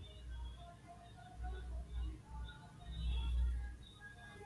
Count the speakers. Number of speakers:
0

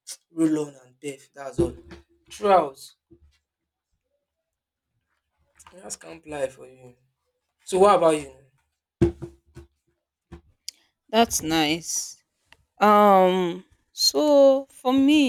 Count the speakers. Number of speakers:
2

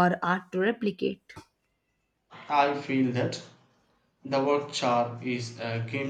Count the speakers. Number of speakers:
2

